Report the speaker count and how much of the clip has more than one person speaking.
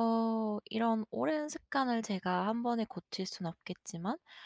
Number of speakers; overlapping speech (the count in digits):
1, no overlap